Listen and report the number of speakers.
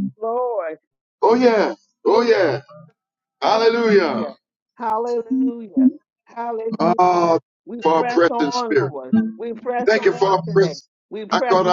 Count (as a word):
two